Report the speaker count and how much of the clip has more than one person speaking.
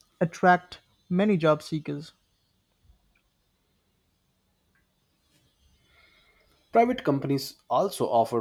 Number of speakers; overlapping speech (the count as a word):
two, no overlap